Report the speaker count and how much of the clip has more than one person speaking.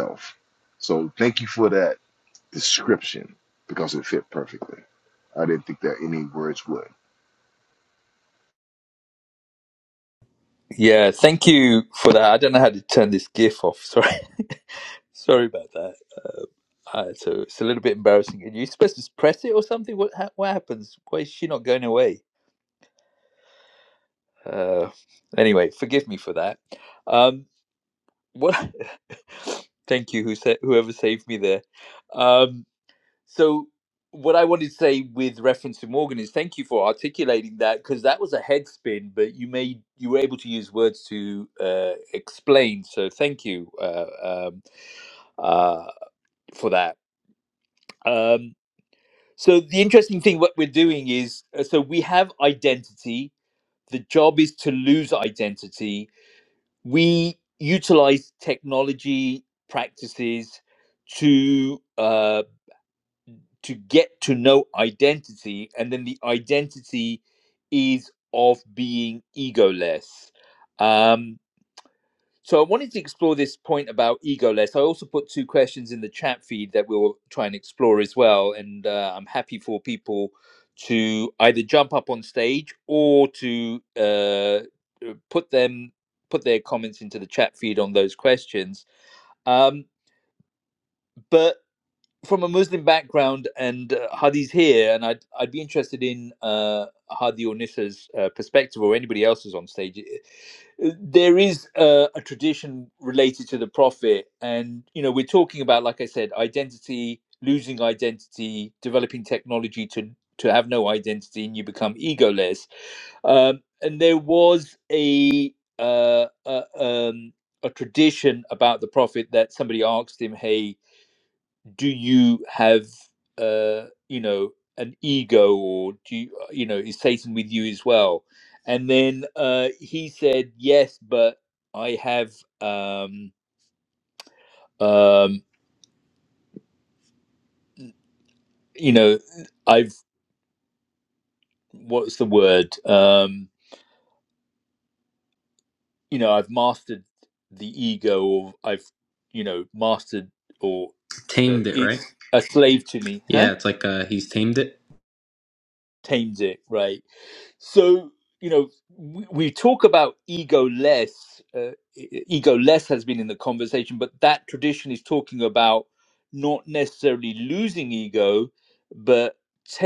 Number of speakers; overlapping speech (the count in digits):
3, under 1%